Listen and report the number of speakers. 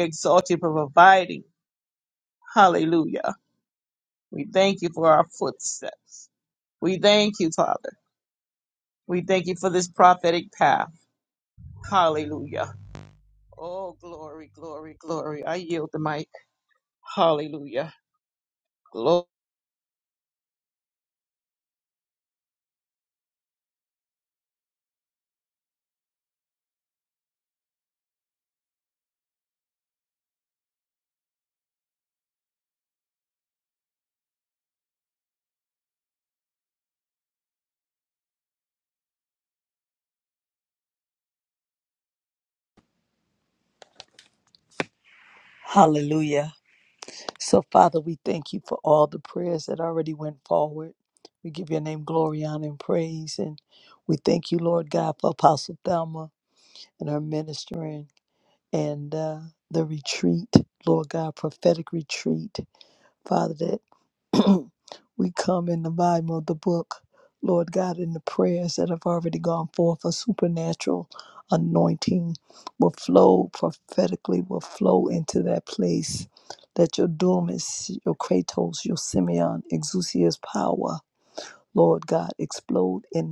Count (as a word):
two